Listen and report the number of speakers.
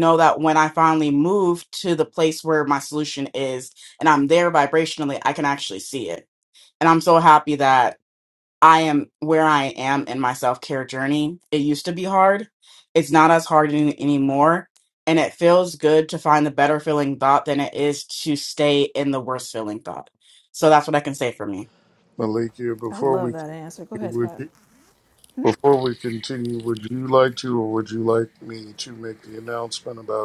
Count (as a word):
three